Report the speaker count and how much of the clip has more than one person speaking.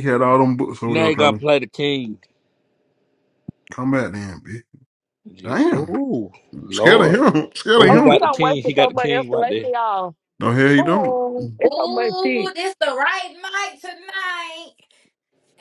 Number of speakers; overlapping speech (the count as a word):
four, about 31%